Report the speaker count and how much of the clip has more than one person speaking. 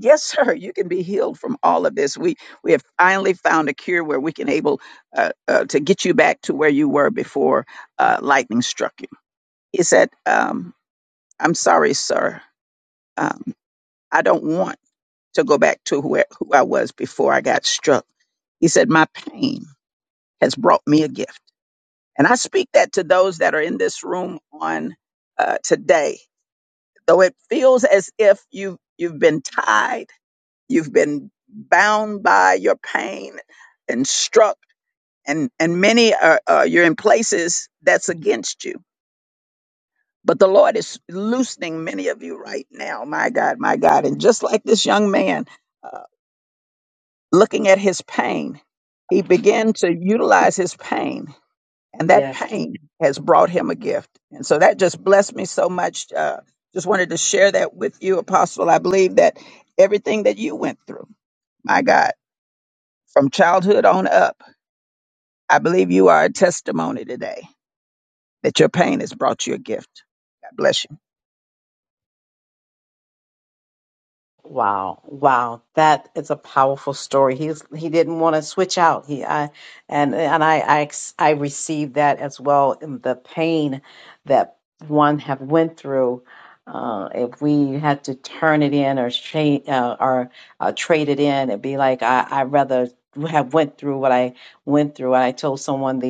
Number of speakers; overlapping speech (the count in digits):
2, under 1%